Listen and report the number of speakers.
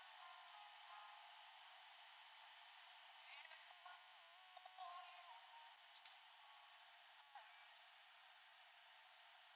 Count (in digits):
0